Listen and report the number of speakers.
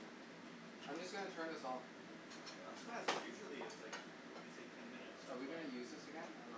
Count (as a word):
two